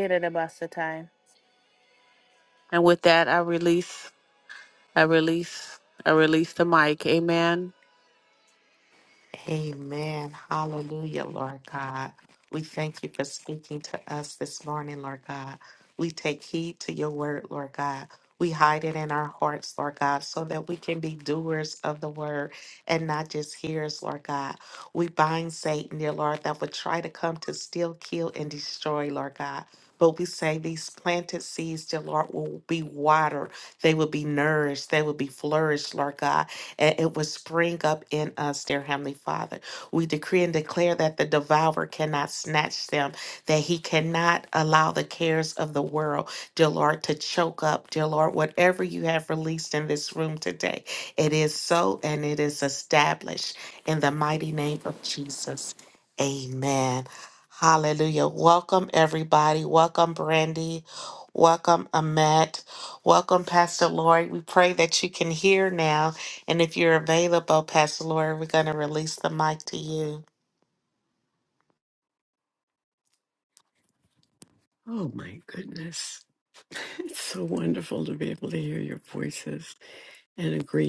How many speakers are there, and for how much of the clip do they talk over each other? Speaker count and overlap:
three, no overlap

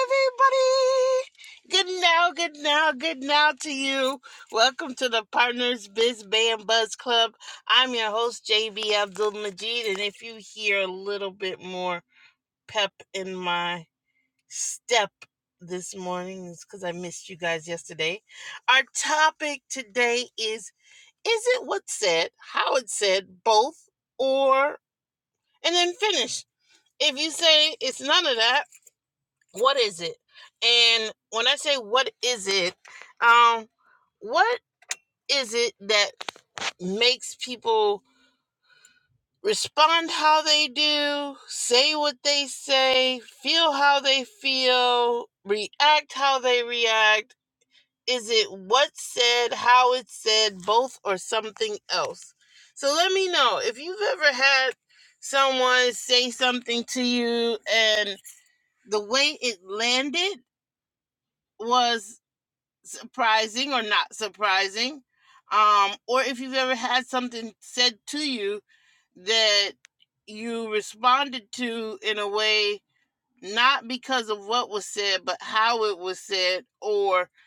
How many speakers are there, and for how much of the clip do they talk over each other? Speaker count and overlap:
one, no overlap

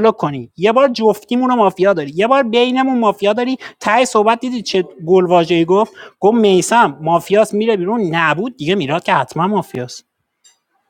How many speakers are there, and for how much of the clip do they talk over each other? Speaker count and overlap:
one, no overlap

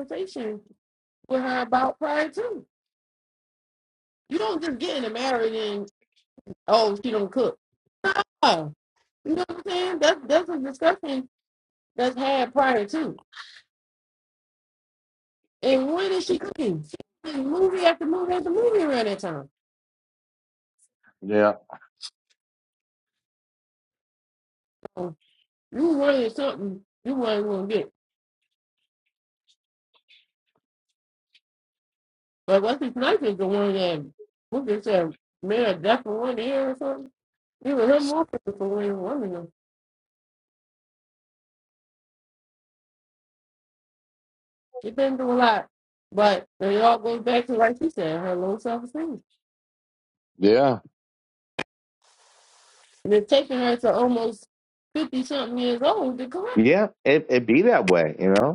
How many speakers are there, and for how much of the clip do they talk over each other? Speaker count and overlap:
two, under 1%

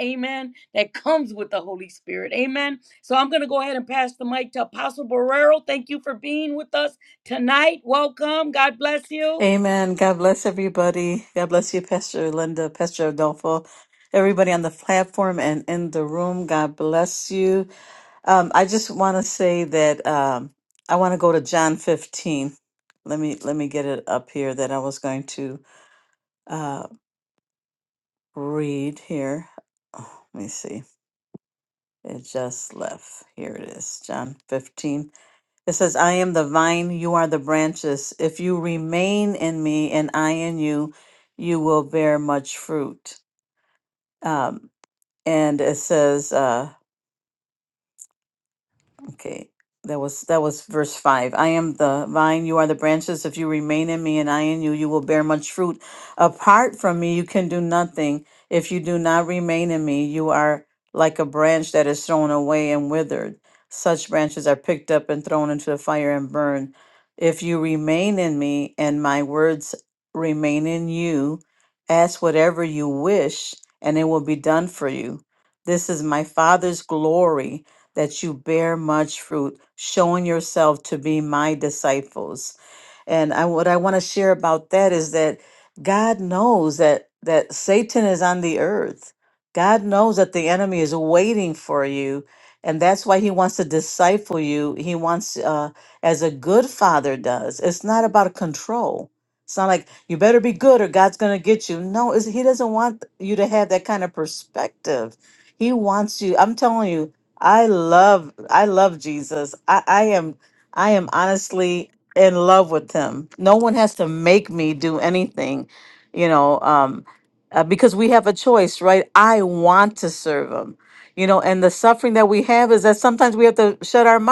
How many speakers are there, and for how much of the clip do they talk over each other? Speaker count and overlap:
two, under 1%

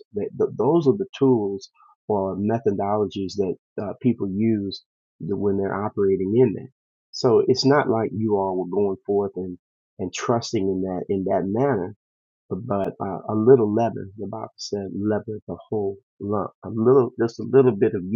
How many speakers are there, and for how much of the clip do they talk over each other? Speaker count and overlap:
one, no overlap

